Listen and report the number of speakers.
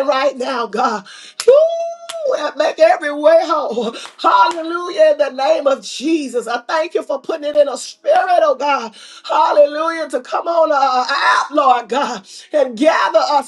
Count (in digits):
1